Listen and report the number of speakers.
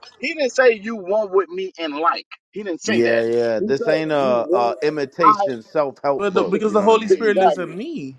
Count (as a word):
three